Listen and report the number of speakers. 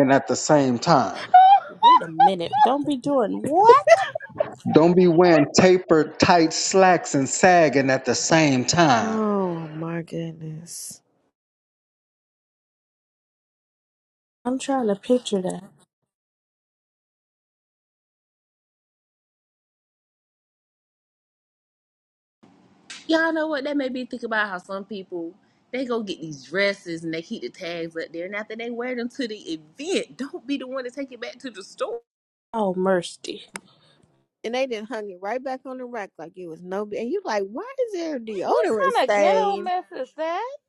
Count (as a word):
five